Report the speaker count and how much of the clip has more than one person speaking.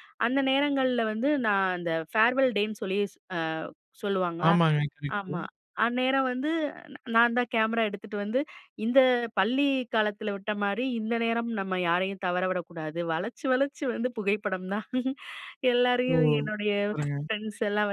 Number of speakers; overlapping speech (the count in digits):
2, about 3%